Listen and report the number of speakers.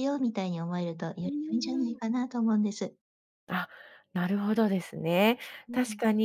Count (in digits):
2